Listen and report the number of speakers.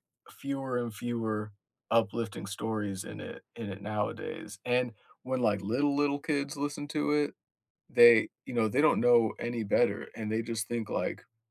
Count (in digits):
1